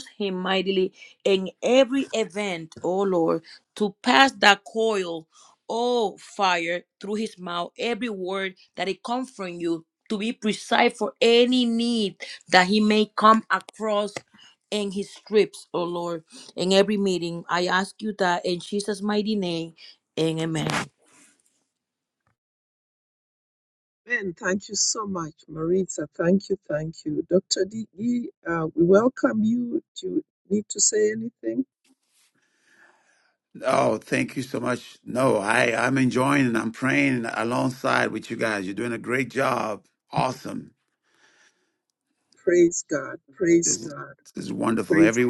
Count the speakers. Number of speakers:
three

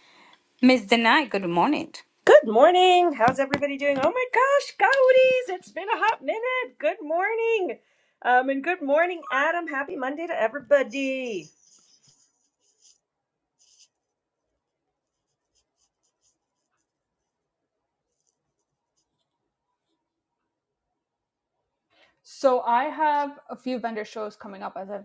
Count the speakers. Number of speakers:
three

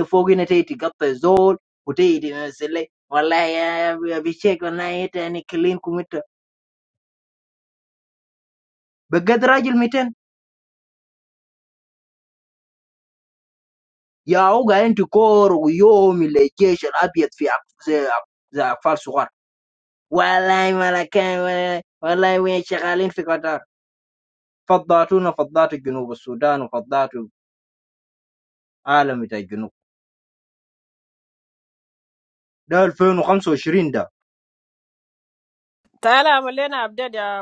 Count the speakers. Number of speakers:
two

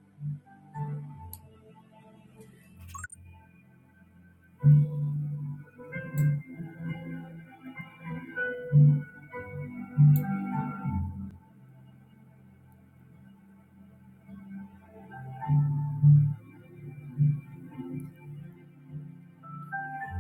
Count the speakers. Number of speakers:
zero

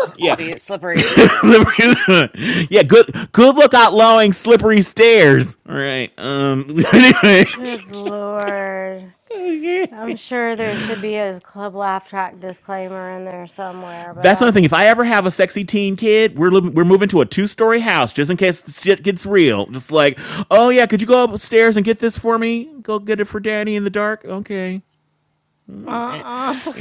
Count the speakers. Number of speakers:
three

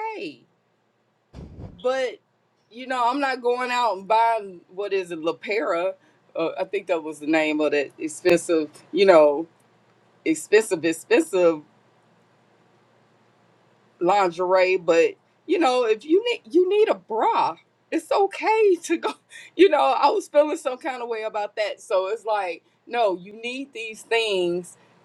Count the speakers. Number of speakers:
one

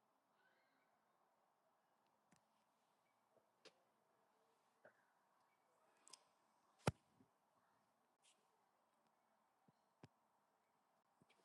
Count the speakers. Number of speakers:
zero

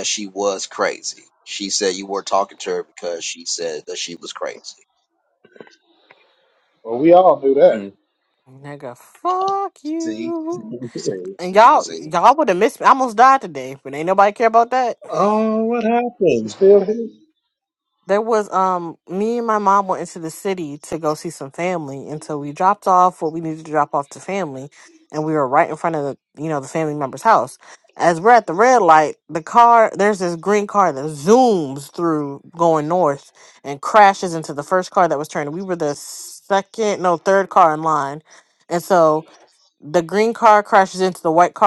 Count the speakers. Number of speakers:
four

